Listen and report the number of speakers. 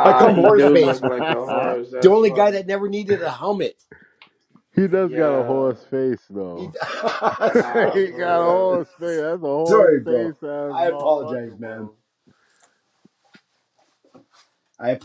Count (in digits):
3